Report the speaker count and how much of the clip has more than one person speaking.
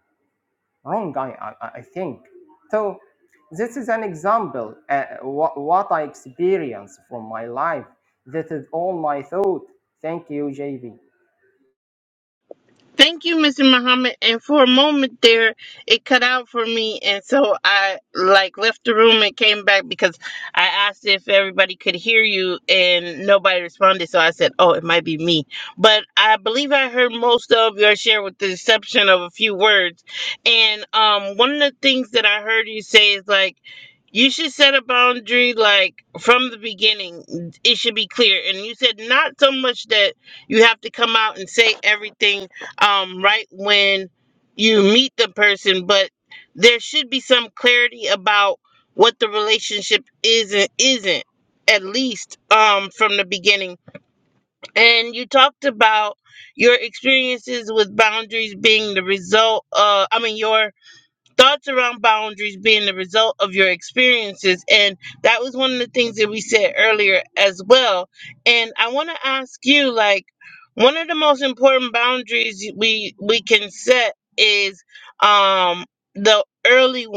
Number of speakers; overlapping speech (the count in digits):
2, no overlap